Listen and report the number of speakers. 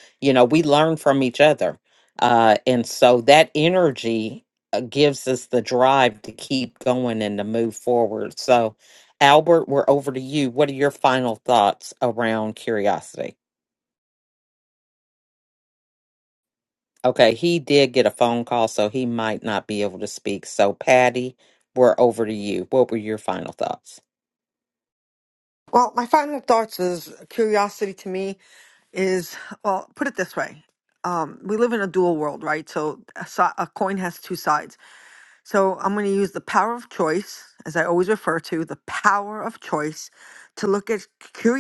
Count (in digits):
2